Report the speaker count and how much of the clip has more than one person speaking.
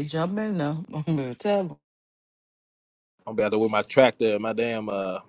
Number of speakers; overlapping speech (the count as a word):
two, no overlap